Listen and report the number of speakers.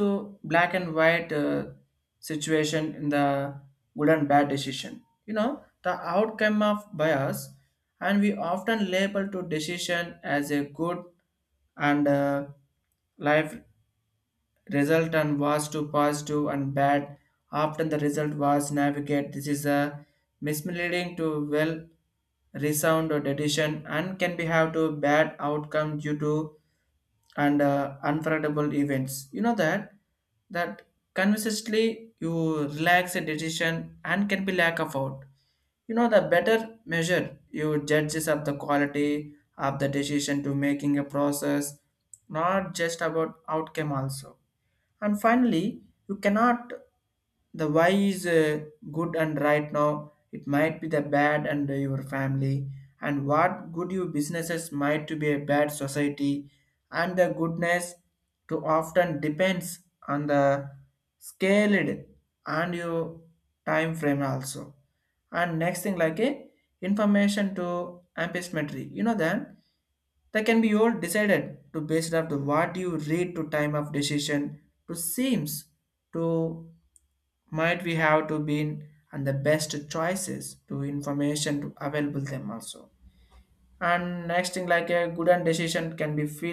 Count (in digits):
1